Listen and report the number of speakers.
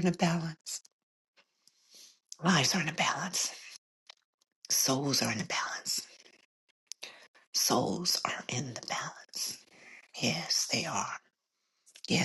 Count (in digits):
1